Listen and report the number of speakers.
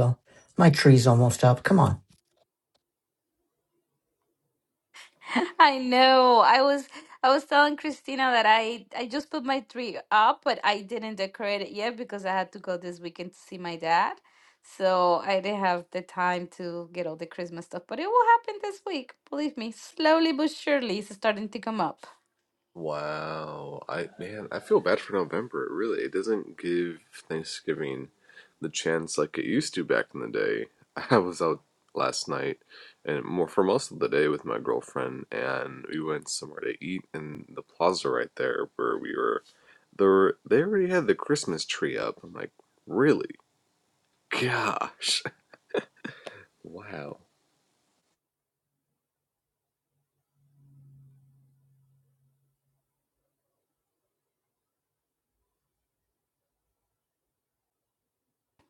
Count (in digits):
3